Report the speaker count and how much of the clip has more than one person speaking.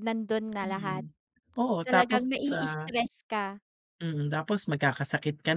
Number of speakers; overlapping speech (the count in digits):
2, about 26%